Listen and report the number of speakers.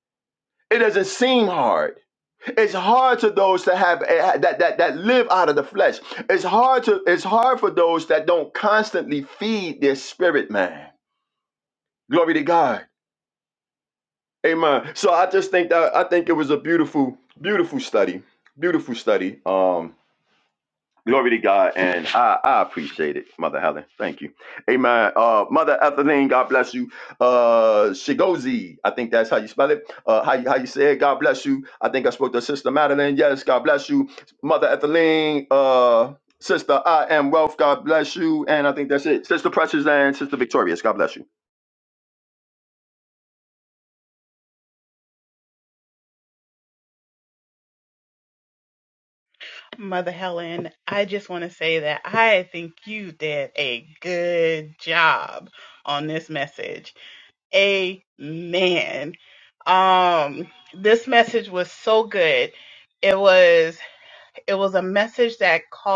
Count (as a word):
two